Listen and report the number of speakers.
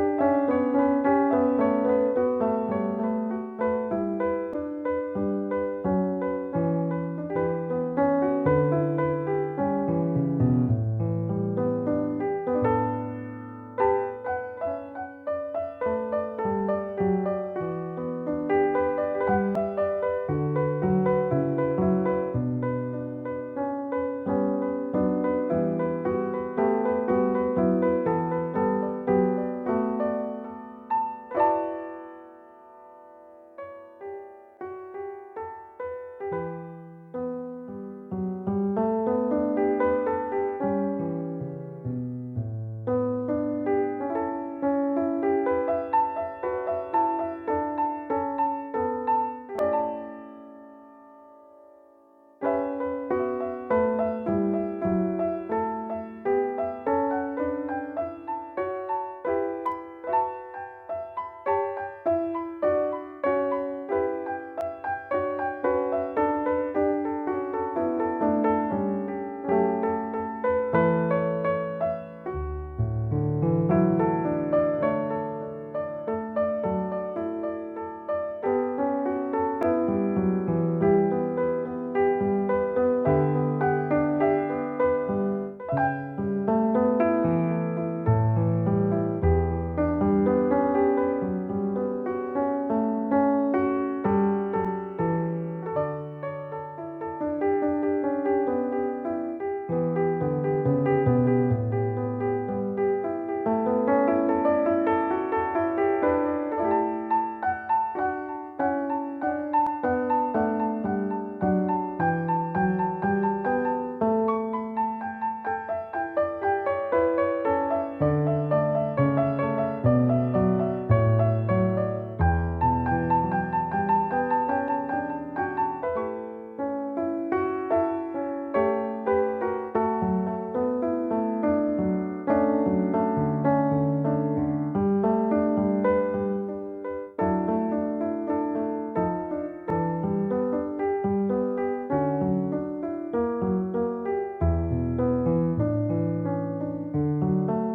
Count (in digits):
0